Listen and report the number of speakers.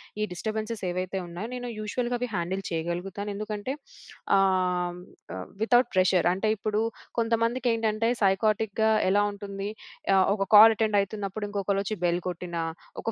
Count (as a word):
one